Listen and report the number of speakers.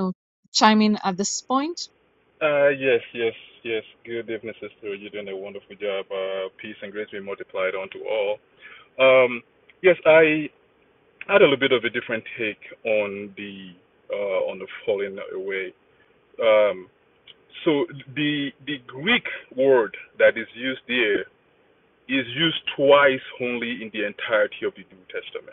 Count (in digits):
2